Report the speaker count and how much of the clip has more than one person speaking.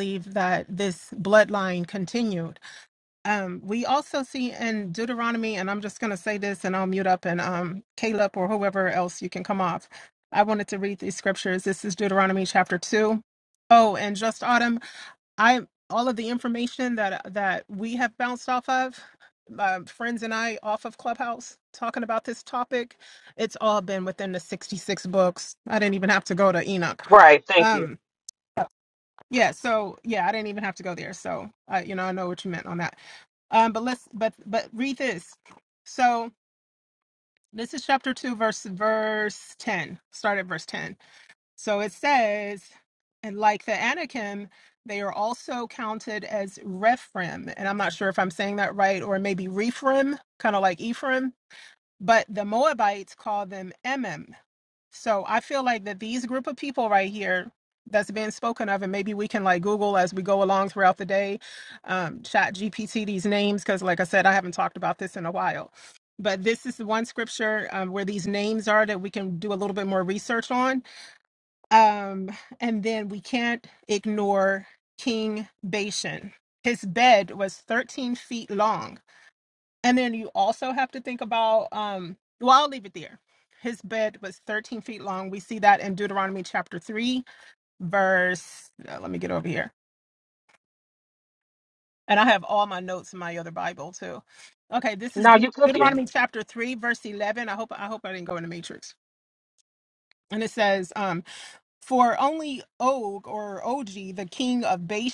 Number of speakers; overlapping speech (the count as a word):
two, about 1%